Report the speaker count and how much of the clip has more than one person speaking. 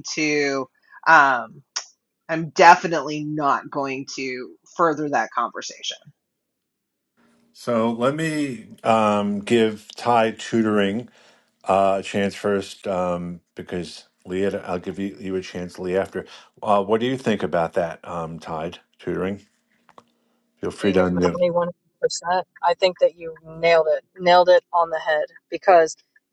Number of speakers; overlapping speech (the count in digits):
3, about 2%